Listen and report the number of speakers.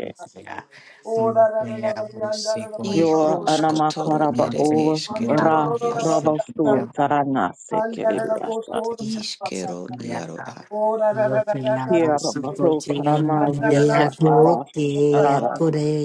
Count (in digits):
4